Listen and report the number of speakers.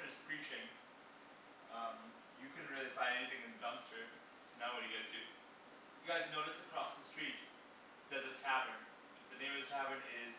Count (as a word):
one